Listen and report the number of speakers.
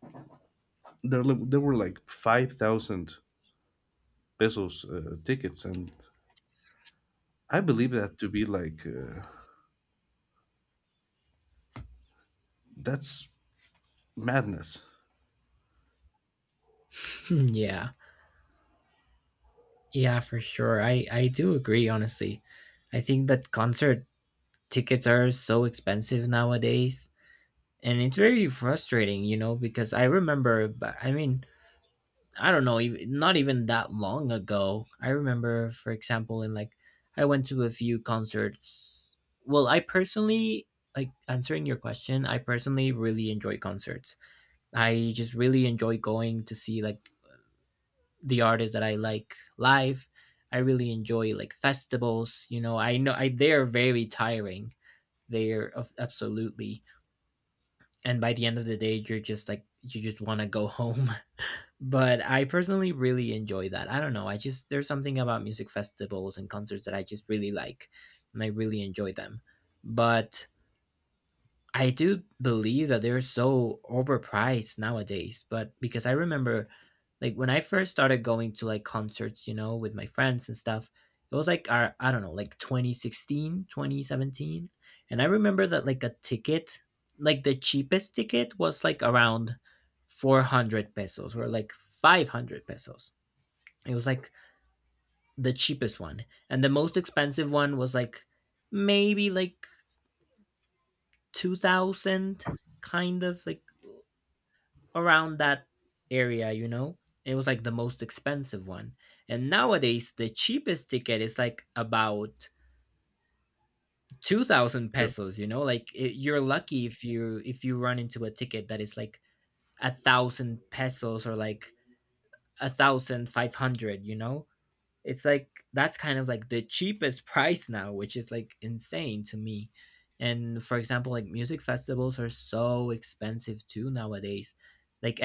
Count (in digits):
2